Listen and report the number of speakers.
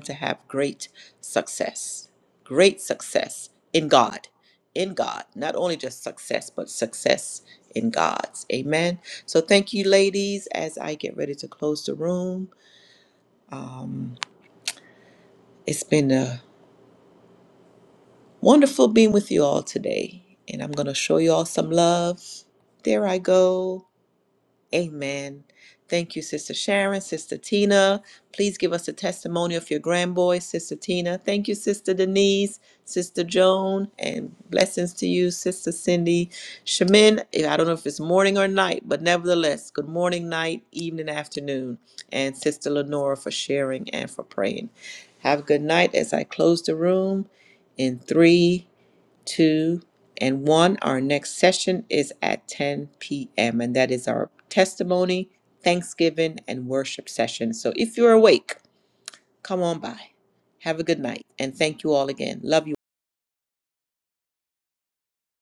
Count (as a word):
one